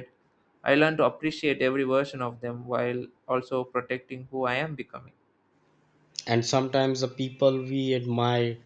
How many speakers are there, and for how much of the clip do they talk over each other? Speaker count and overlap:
2, no overlap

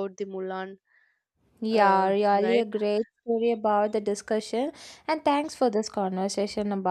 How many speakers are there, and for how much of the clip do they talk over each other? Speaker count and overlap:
2, about 13%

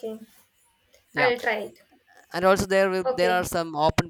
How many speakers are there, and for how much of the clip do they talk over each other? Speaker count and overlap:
2, about 14%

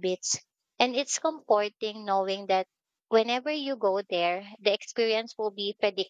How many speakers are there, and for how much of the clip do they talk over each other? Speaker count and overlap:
1, no overlap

